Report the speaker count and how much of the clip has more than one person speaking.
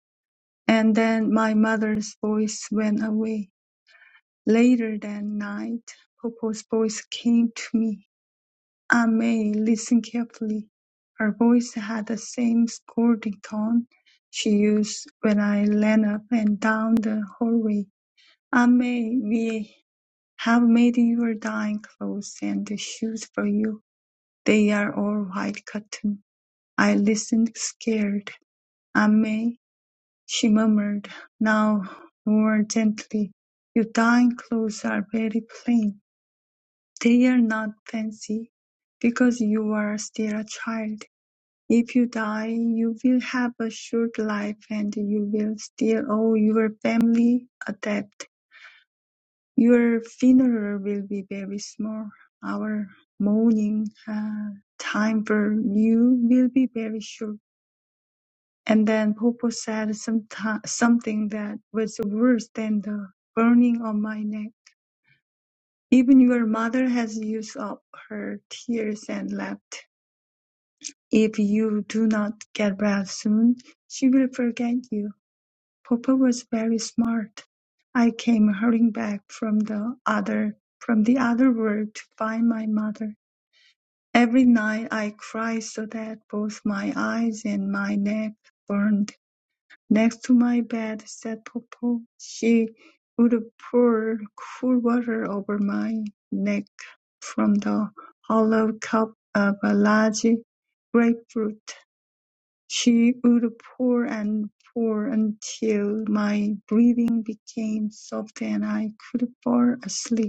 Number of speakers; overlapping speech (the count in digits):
1, no overlap